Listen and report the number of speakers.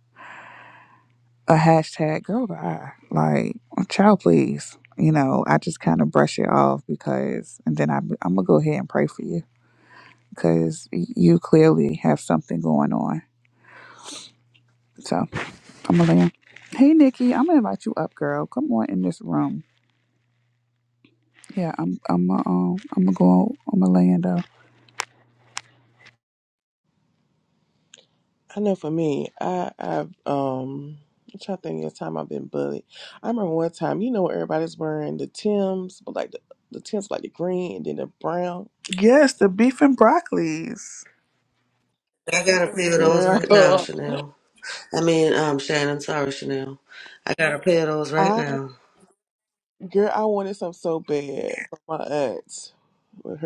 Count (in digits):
3